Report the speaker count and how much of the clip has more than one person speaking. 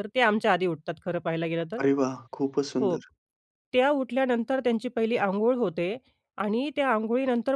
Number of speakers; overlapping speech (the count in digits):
2, about 3%